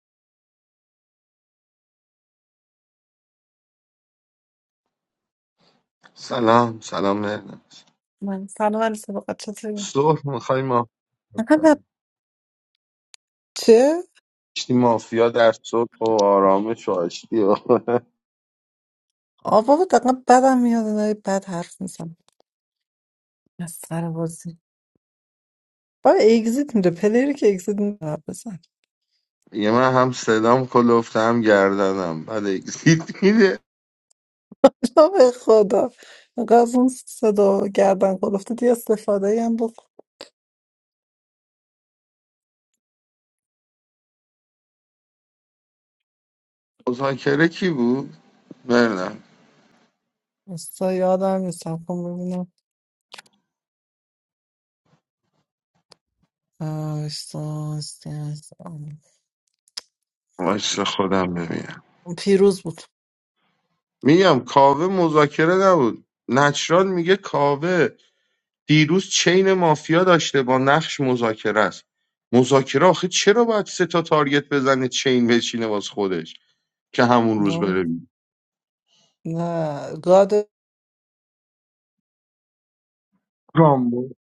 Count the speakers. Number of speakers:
2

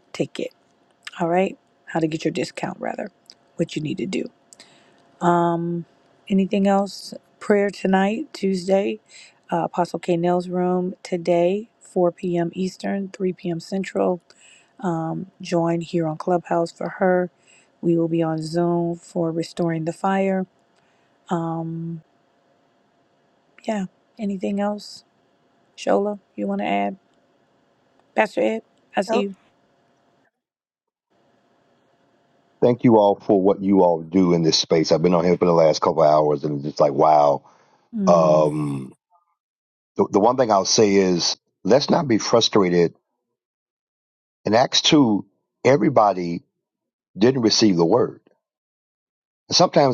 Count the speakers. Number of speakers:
2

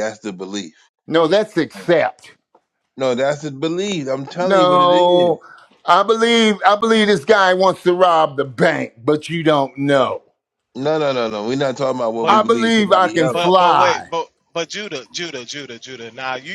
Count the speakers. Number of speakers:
3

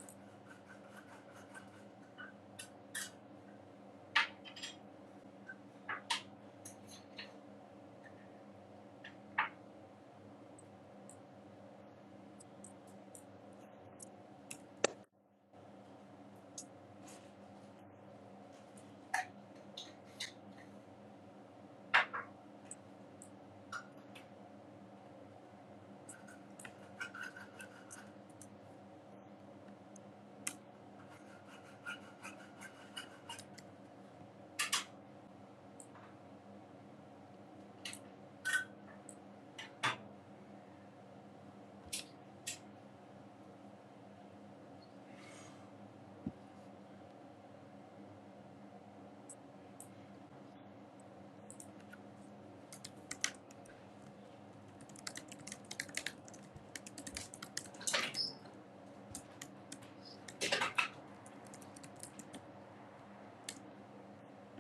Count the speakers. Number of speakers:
0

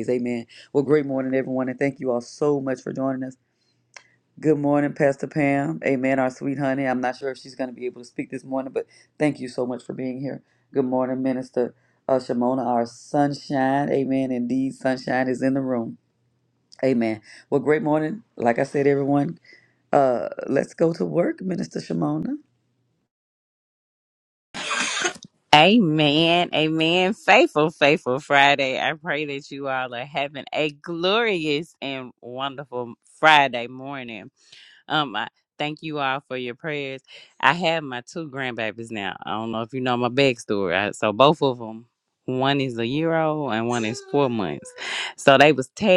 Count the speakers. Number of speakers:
2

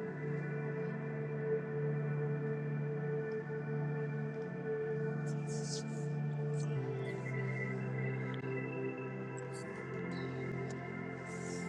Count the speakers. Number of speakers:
0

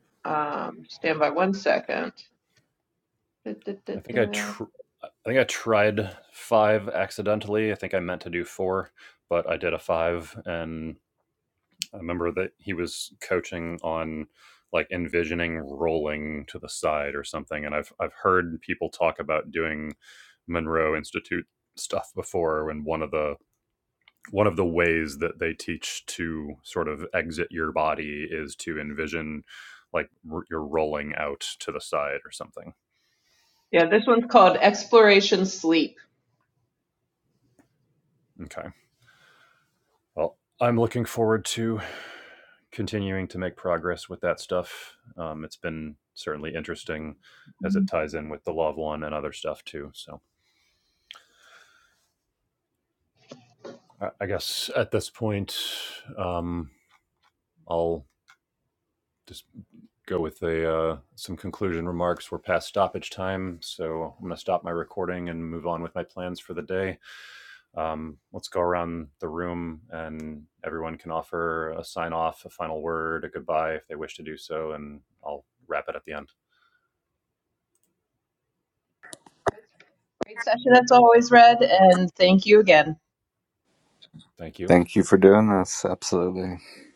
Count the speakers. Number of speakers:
3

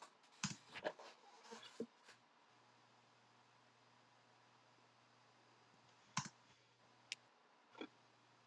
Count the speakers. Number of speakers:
0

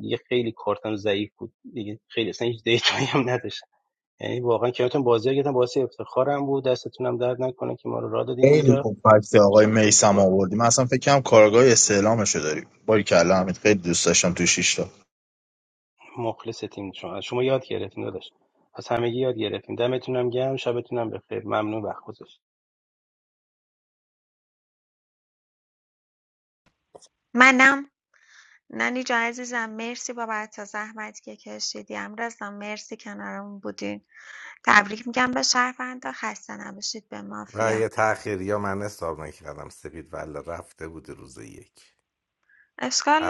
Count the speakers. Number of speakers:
4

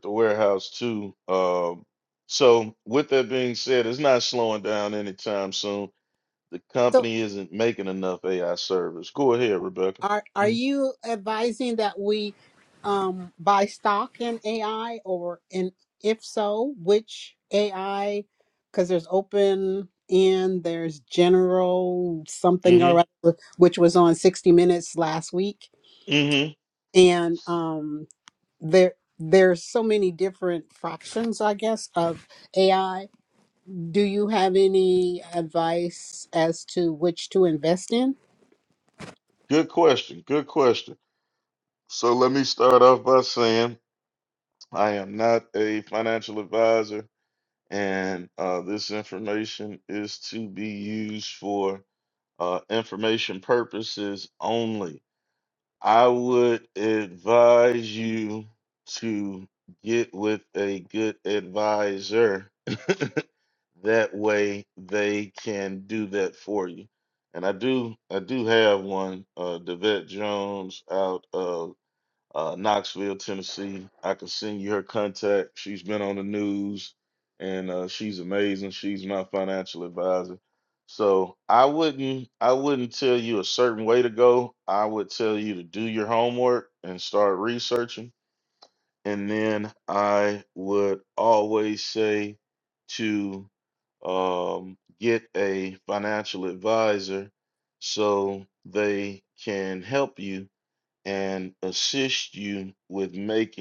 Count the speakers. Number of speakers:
2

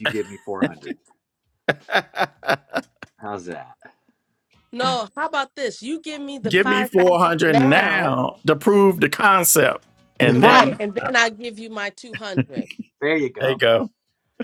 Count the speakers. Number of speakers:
3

